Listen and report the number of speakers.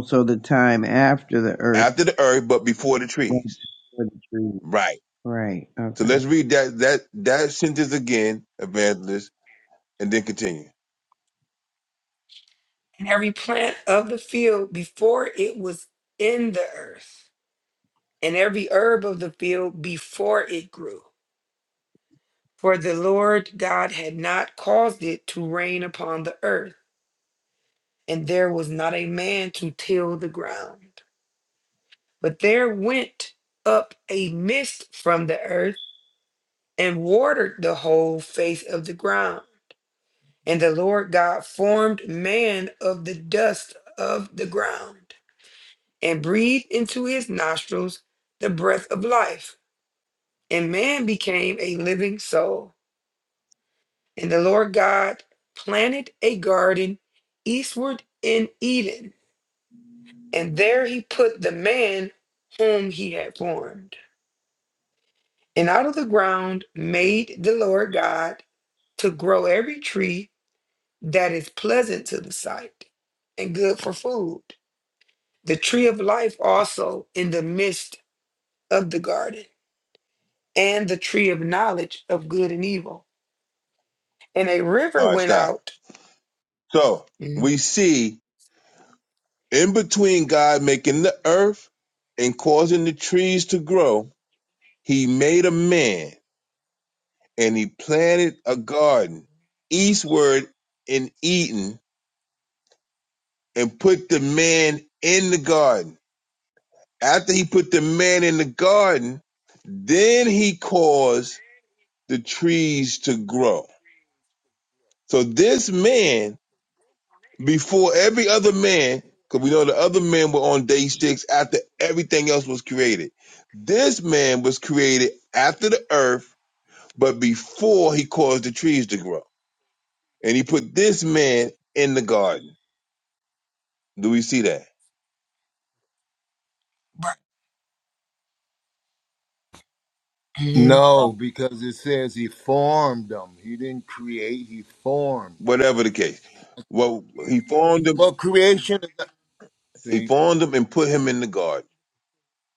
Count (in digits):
4